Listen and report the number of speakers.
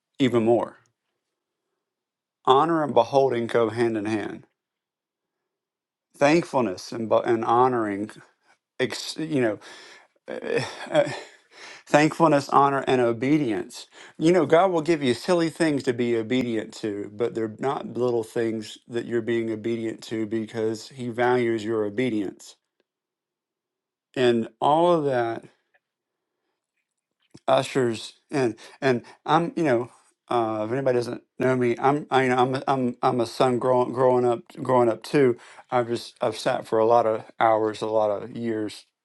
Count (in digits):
1